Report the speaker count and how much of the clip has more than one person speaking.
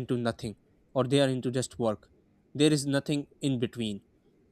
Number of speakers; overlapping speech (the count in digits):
1, no overlap